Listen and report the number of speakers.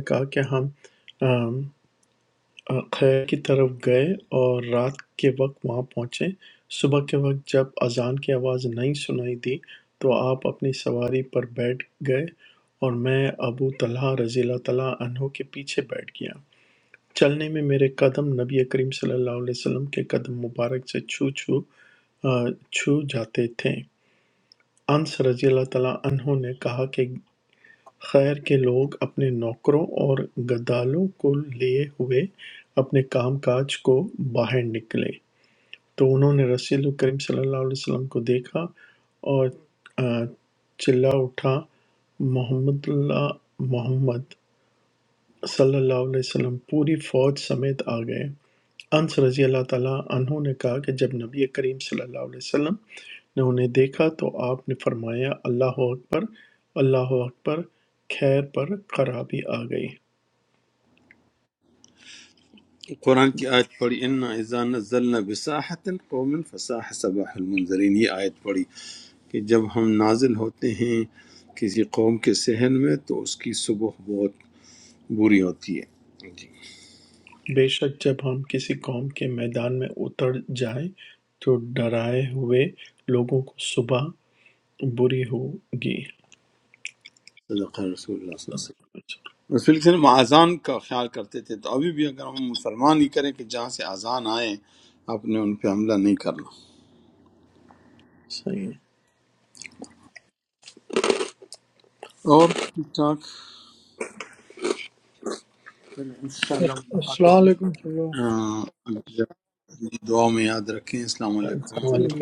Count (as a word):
three